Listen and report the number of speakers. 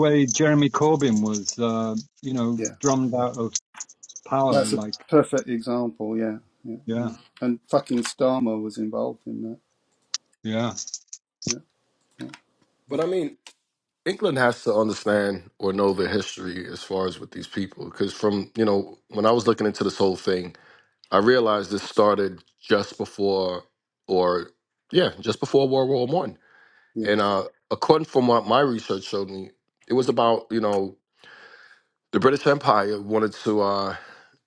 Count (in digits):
3